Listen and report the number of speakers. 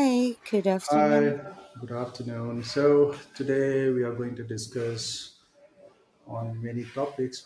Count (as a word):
two